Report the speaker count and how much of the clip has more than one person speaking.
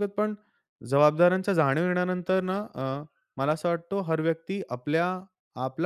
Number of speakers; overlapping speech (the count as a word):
one, no overlap